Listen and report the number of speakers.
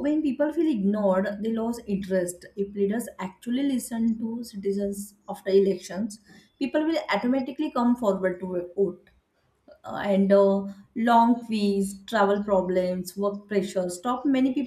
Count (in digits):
1